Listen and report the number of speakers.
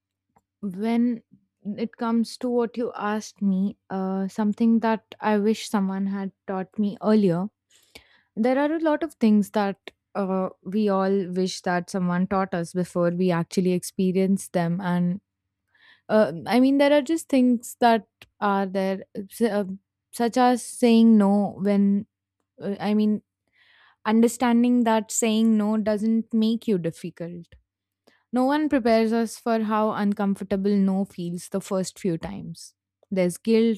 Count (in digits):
1